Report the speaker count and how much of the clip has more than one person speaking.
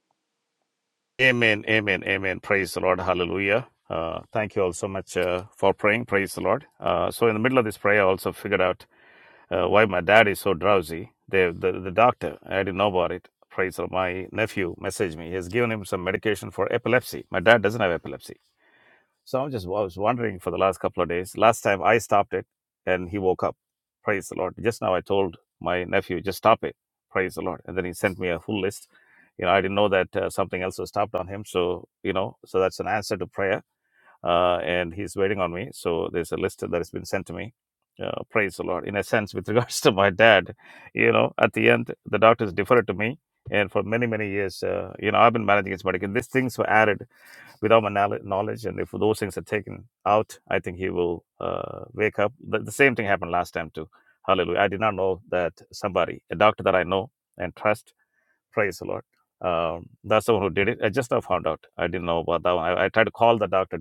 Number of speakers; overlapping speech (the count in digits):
1, no overlap